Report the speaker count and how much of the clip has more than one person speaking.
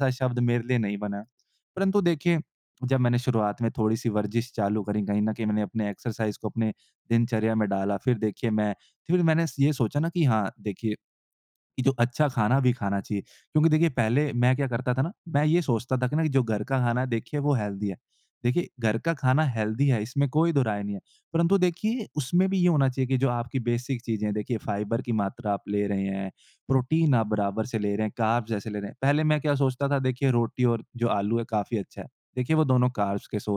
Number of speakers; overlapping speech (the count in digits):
1, no overlap